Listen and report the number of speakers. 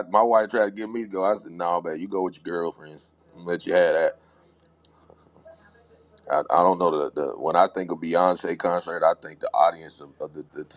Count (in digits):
1